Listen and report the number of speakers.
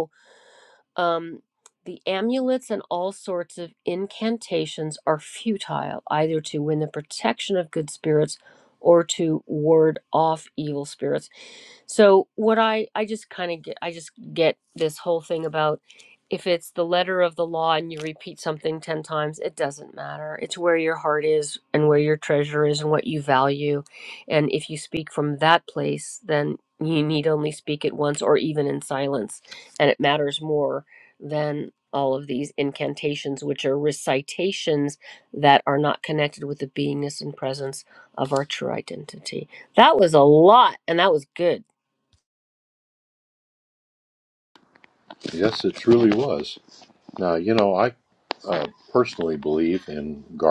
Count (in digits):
2